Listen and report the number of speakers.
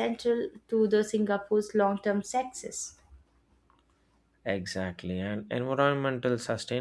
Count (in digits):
2